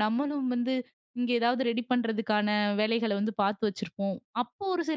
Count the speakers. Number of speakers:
one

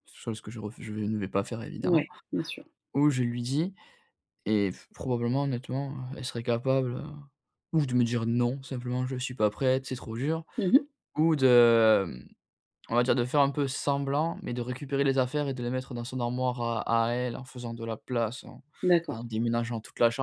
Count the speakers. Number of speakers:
two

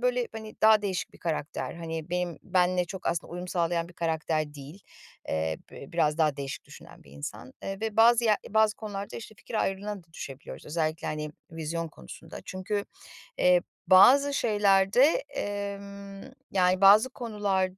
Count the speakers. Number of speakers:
one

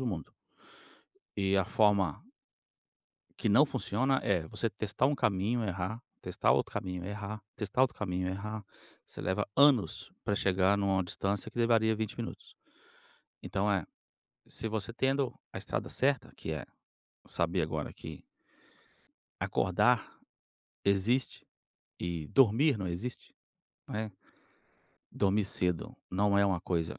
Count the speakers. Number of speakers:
one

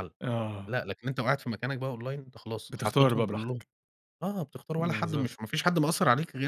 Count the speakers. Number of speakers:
two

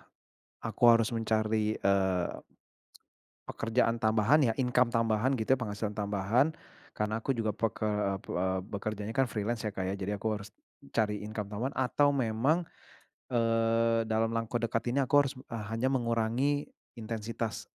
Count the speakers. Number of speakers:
one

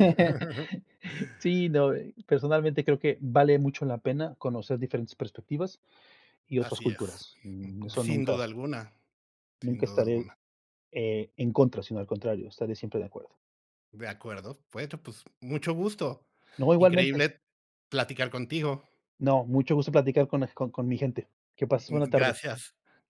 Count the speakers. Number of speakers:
two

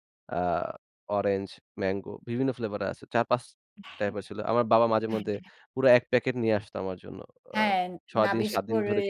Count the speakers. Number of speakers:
two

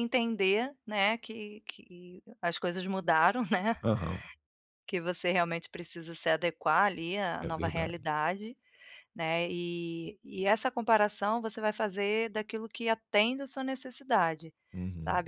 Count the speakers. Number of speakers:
two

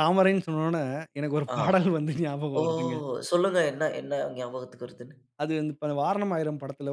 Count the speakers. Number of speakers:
two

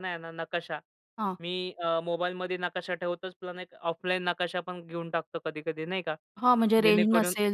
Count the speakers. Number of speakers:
two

